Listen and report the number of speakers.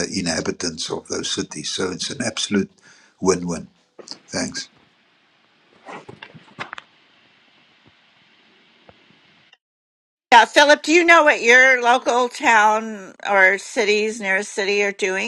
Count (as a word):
two